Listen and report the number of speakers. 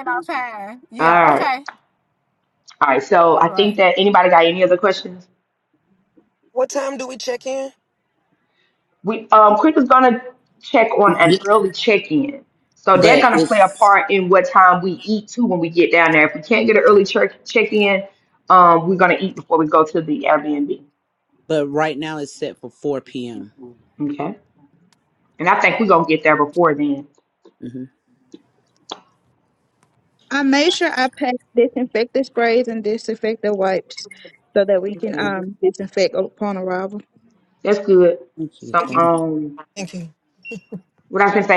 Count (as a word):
five